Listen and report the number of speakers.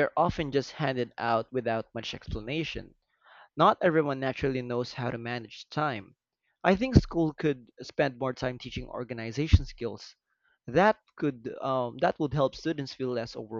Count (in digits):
1